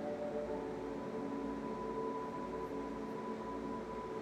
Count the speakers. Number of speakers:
zero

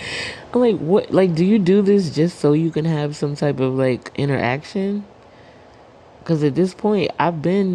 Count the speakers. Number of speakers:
one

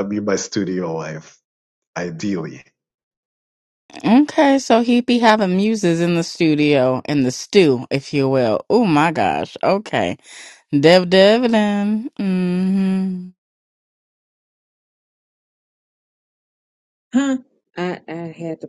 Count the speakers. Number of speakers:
three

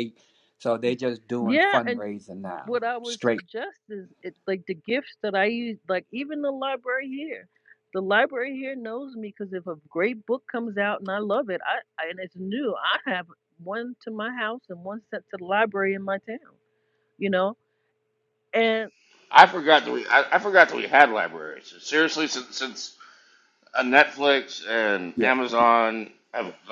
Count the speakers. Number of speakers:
three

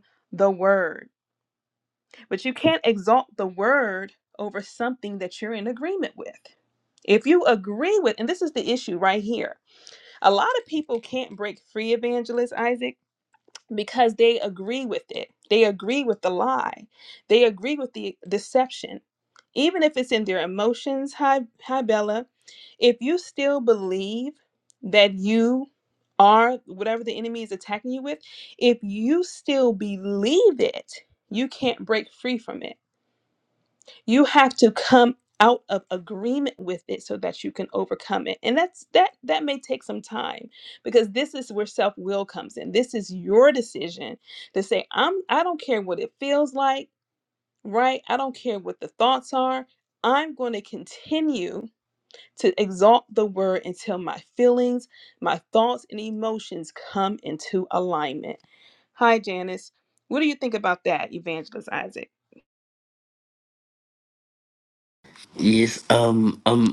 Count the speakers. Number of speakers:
two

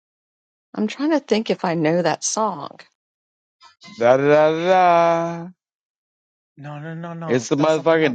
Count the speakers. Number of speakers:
three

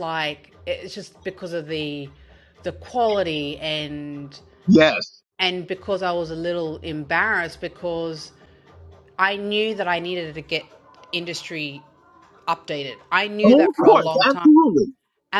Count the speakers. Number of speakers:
two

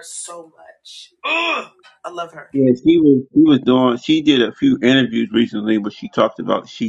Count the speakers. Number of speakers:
two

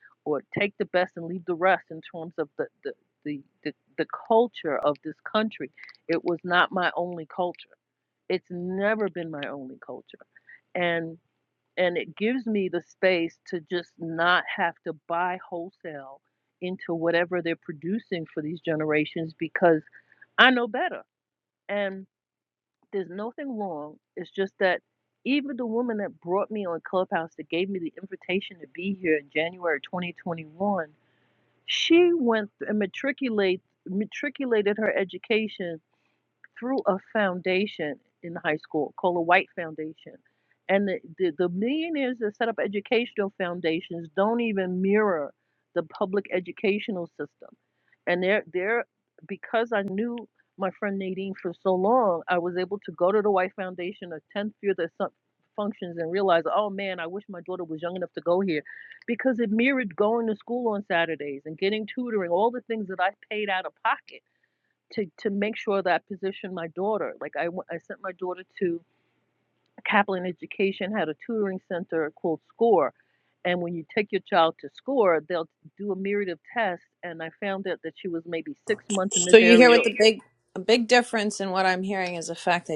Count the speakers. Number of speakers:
two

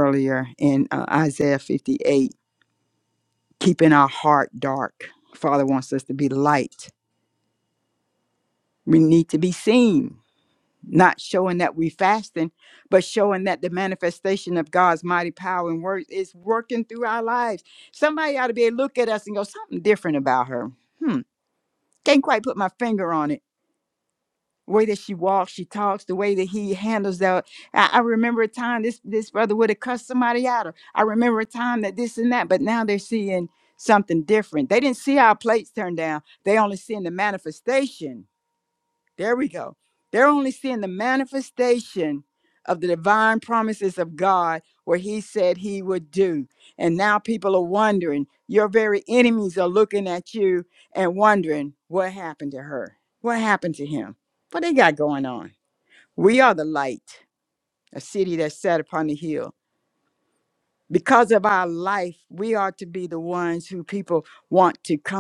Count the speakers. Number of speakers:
one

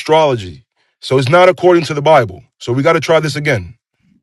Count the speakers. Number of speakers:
one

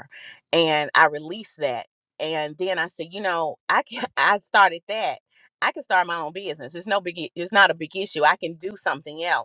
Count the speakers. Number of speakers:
one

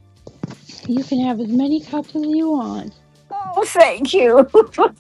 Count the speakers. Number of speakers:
two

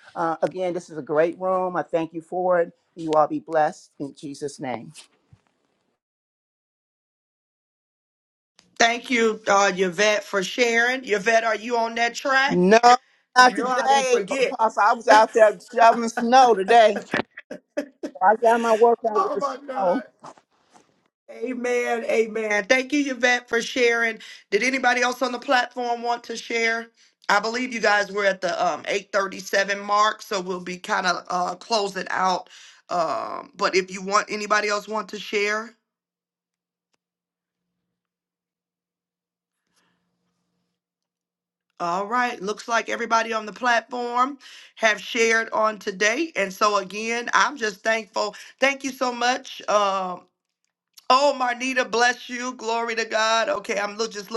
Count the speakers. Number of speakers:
two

